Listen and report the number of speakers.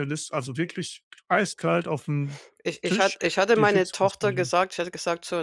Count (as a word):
two